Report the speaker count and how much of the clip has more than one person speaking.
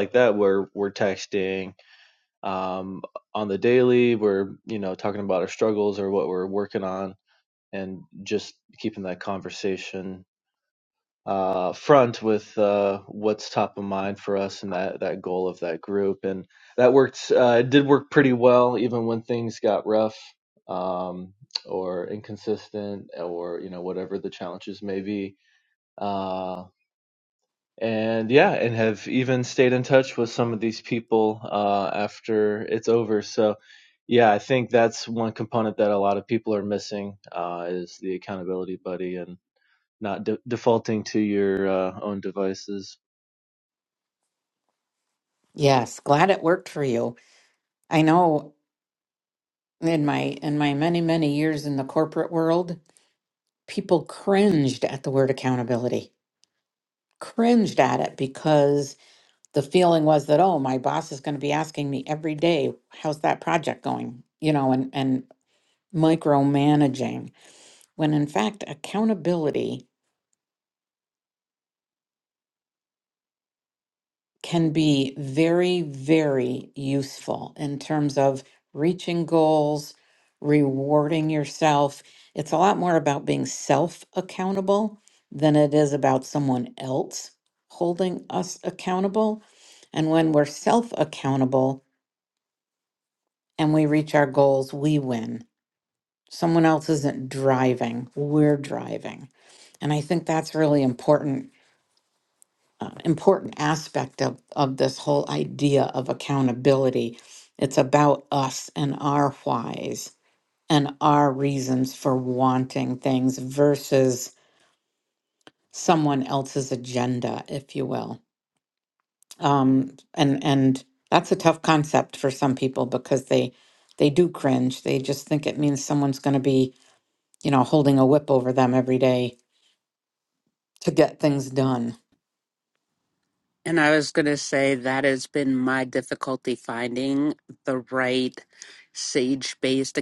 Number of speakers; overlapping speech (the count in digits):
3, no overlap